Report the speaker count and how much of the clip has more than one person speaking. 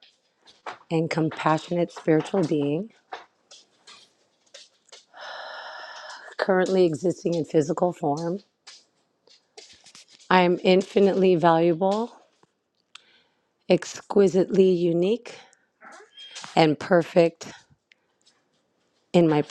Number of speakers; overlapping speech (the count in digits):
1, no overlap